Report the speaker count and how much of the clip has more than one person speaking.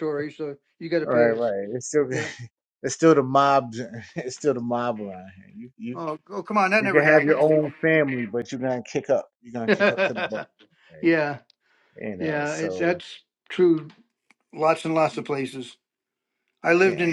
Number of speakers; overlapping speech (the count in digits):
2, about 14%